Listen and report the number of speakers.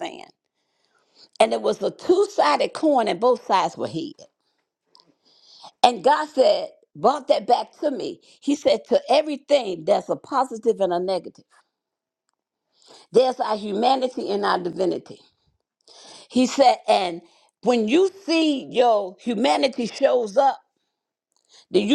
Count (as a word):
one